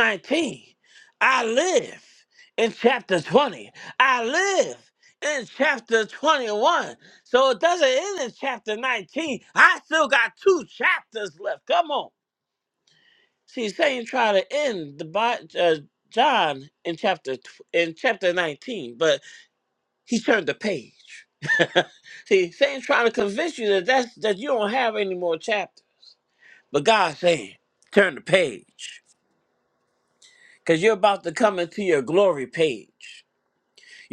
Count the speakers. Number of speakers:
1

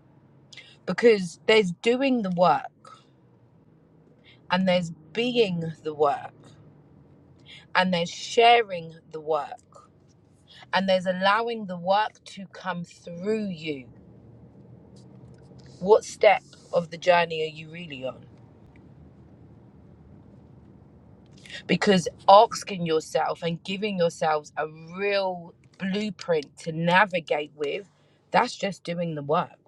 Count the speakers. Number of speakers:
1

